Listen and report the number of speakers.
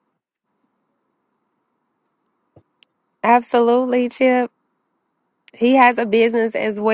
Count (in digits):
1